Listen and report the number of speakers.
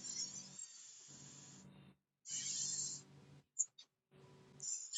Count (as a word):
zero